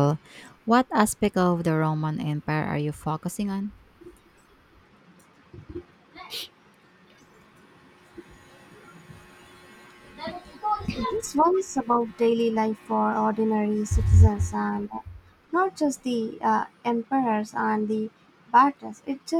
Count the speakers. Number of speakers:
2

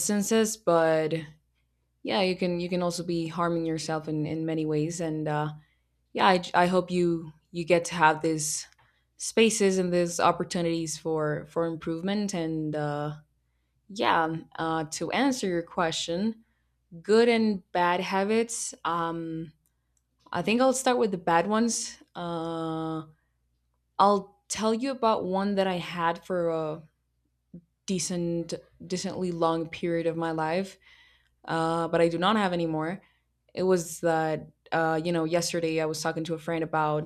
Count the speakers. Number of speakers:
1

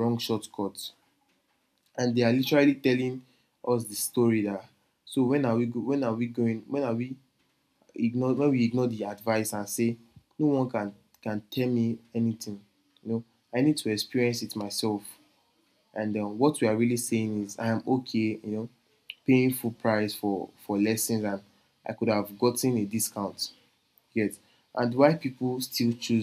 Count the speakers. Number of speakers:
1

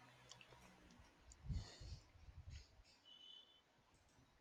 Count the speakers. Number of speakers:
0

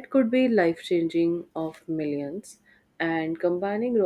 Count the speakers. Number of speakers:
1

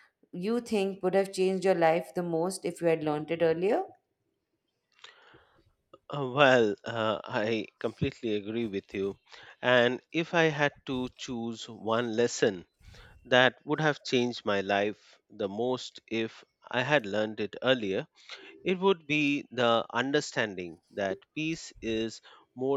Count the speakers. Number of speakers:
2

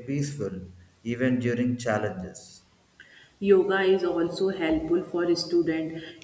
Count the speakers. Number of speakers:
2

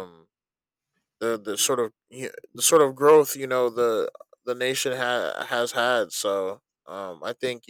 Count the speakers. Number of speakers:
1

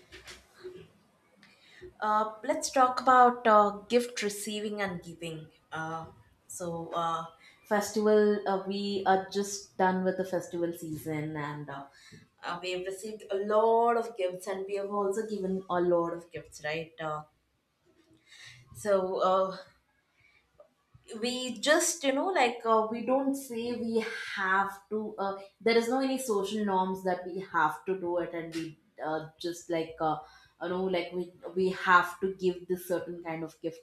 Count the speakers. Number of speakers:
1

